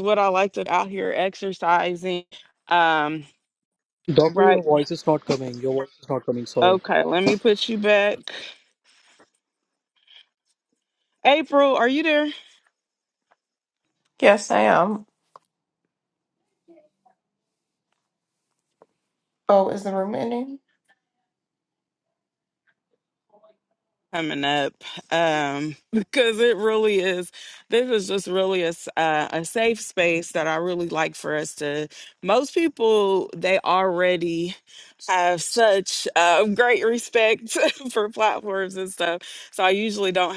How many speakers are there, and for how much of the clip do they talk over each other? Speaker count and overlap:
three, about 1%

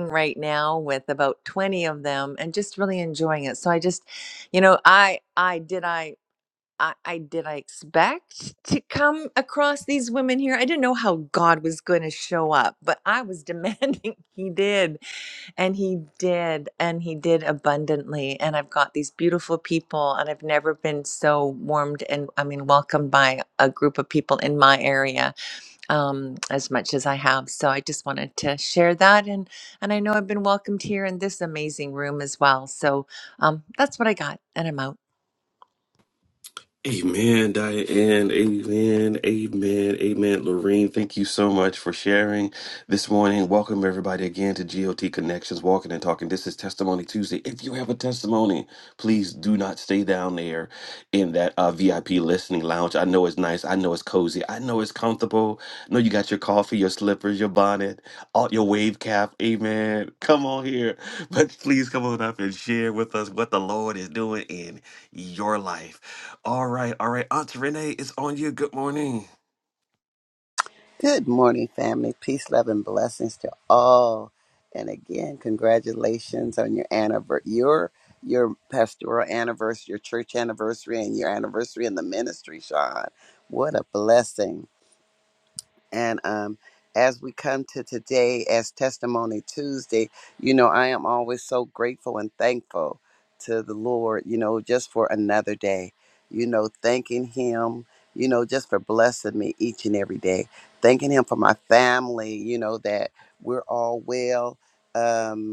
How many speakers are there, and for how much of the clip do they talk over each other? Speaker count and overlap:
three, no overlap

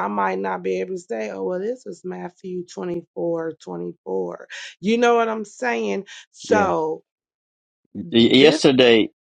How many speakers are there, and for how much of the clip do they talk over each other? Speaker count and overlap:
two, about 5%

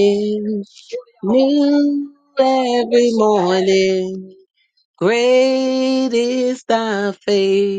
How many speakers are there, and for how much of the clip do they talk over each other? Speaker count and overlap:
one, no overlap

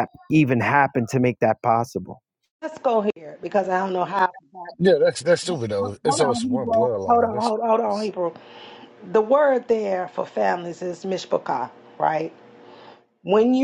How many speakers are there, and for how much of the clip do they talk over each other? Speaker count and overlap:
three, about 11%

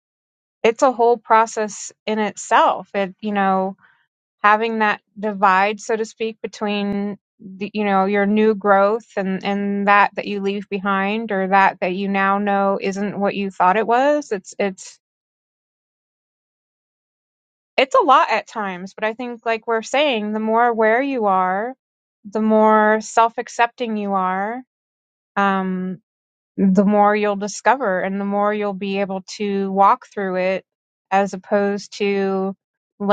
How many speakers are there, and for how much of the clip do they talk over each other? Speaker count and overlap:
one, no overlap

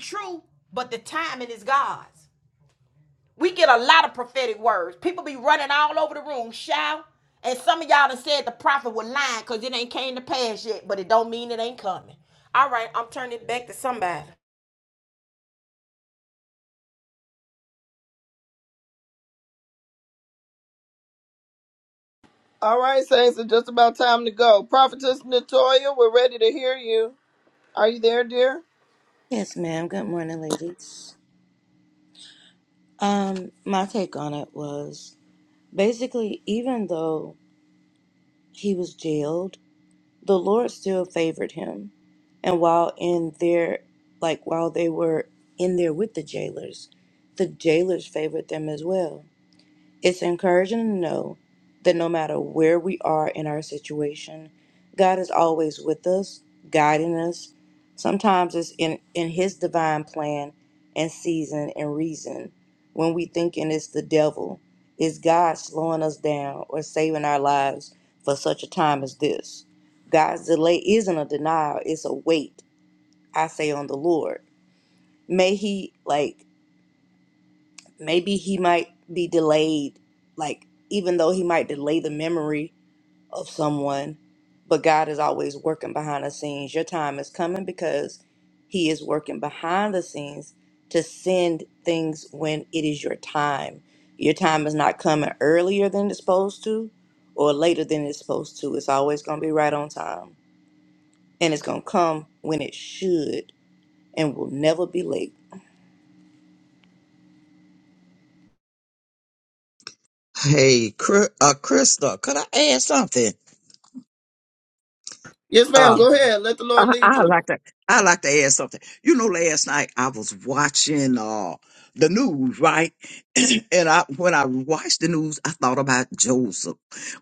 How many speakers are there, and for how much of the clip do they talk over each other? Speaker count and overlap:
four, about 1%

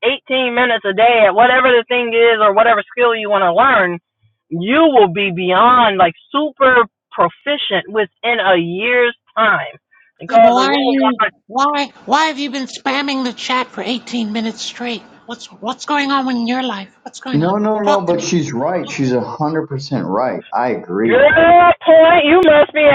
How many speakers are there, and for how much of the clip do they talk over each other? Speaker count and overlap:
three, about 11%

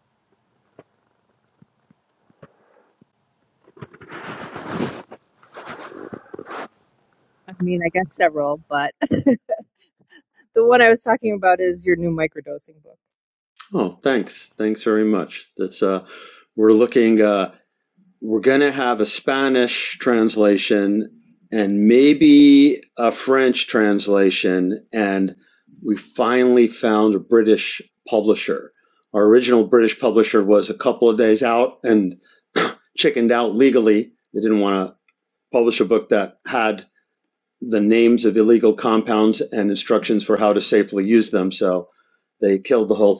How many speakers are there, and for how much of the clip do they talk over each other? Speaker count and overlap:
two, no overlap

